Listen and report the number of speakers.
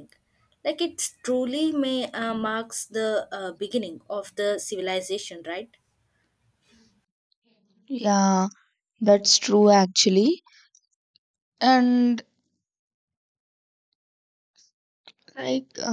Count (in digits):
2